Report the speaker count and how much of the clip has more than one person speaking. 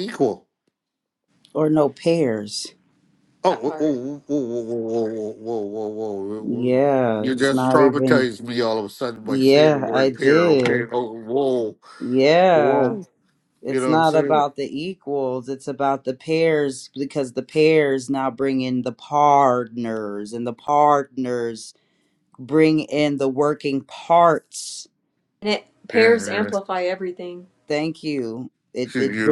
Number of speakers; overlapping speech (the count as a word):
three, about 20%